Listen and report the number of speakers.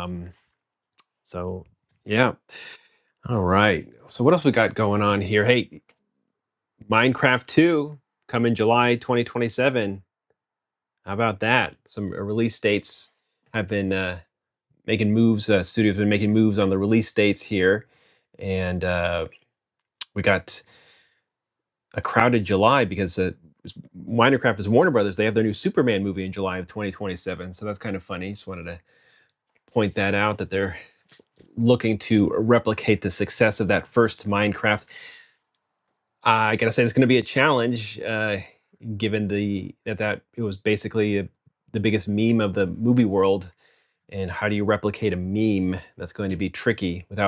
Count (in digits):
1